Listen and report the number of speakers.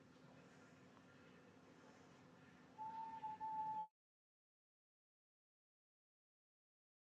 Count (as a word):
zero